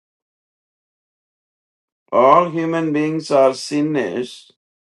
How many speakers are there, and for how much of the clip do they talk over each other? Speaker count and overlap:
1, no overlap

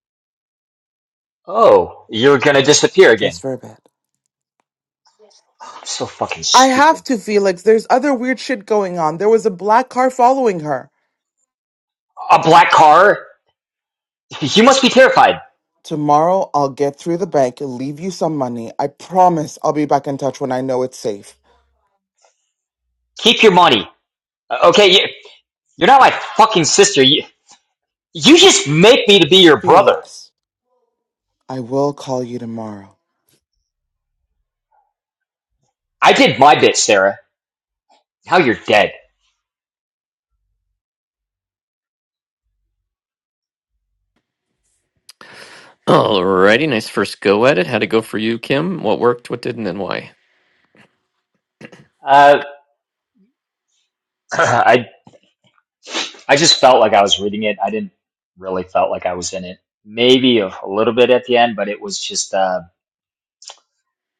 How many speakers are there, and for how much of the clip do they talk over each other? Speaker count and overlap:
3, about 1%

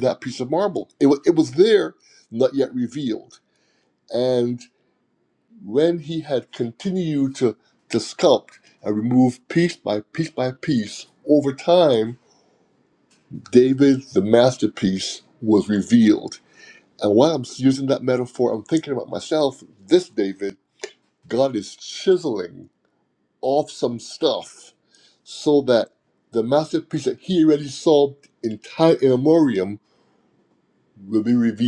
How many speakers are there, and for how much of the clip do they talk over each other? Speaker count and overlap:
1, no overlap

